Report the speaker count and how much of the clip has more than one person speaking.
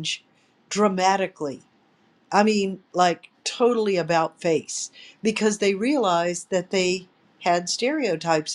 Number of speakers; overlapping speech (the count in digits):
1, no overlap